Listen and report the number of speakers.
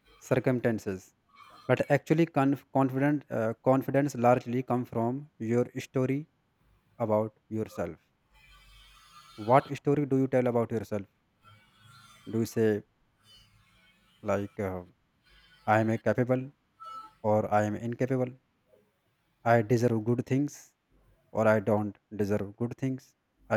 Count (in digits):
1